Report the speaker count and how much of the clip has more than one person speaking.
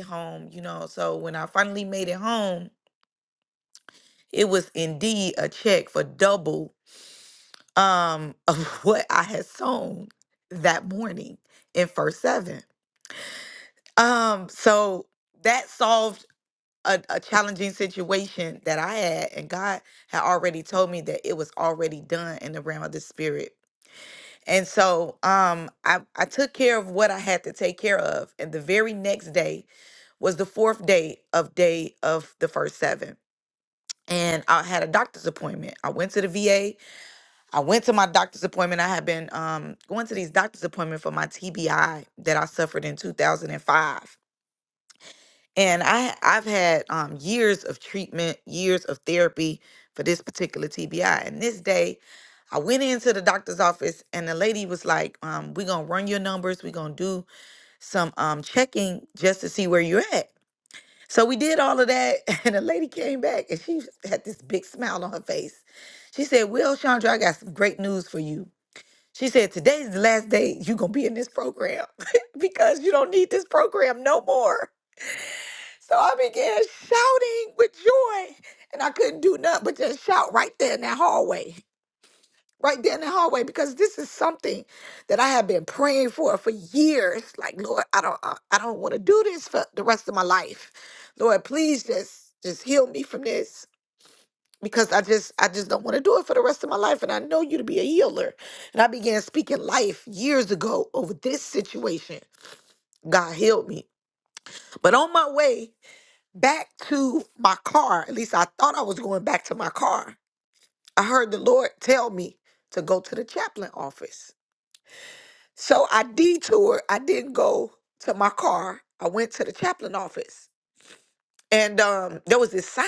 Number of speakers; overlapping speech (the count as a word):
one, no overlap